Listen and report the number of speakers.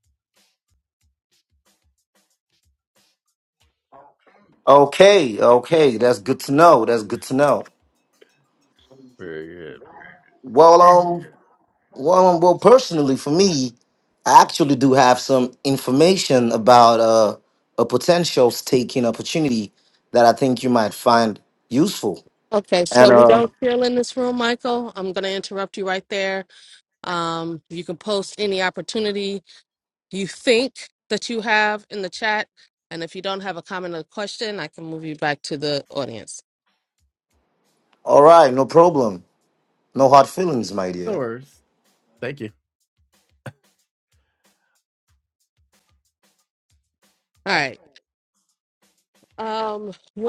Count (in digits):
3